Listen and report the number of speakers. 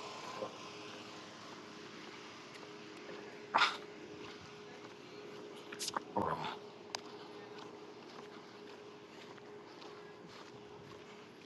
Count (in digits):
0